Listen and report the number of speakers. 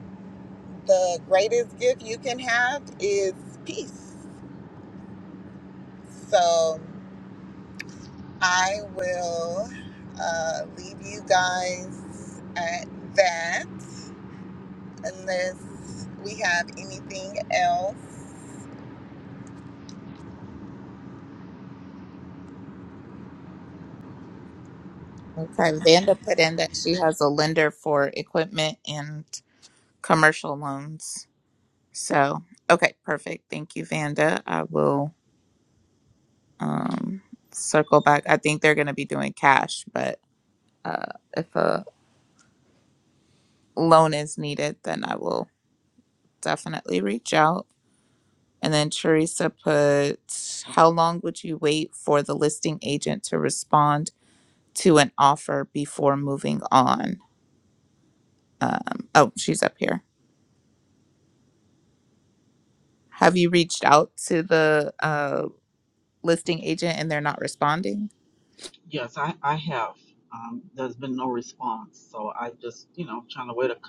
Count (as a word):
three